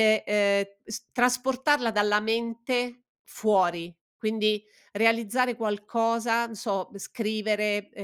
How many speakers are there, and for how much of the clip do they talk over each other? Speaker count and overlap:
1, no overlap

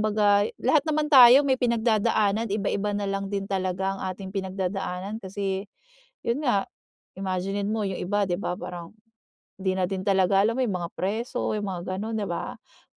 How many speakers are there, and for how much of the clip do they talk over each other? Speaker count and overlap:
1, no overlap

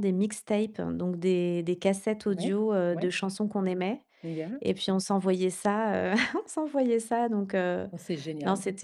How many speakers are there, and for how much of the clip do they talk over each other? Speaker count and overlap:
2, about 7%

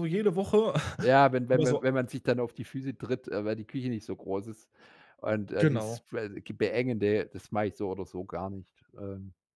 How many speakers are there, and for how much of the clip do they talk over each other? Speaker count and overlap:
2, about 6%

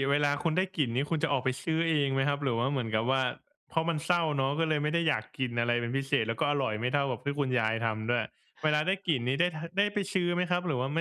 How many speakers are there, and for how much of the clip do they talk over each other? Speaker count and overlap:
1, no overlap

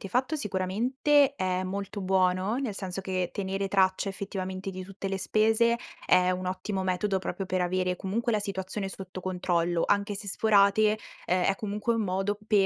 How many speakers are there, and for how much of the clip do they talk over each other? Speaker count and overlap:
1, no overlap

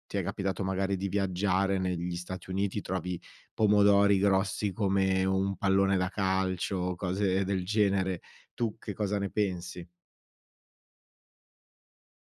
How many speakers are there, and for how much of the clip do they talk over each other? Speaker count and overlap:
1, no overlap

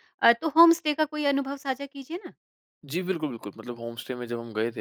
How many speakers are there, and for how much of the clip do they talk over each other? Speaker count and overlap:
2, no overlap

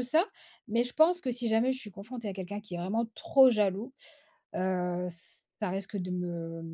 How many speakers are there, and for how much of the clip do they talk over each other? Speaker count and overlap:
1, no overlap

